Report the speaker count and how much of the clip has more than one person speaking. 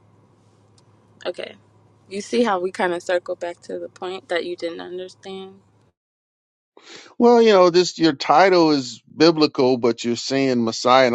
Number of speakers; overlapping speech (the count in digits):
2, no overlap